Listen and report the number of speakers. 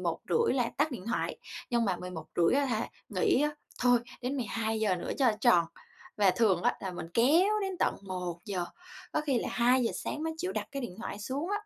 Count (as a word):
one